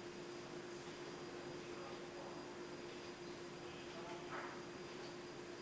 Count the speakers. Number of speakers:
0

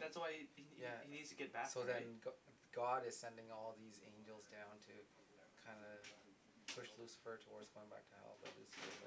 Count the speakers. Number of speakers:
2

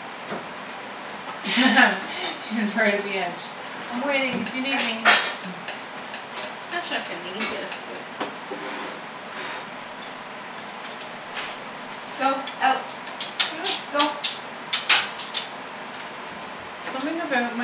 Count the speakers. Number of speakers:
2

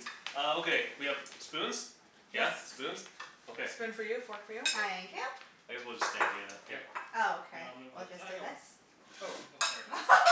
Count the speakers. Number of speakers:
4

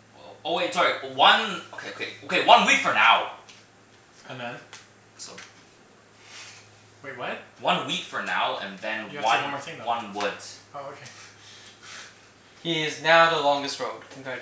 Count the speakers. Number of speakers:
3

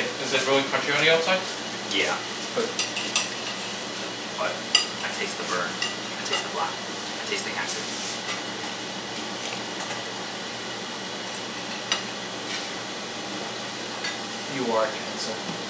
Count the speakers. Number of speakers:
2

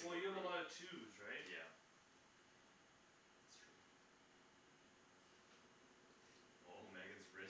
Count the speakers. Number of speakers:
2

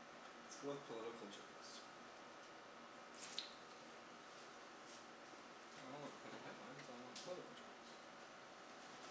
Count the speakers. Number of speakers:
1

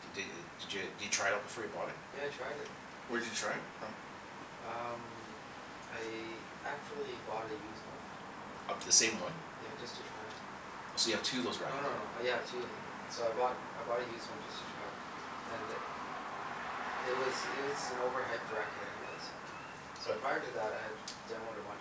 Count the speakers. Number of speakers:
2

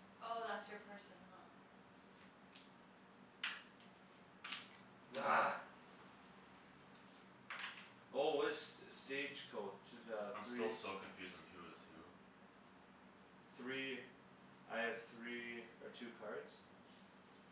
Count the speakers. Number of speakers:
3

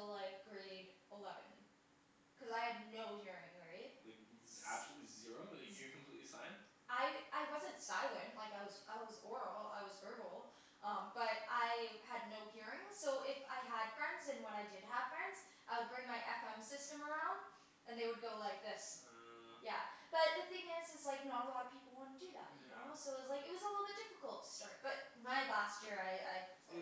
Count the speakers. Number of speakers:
2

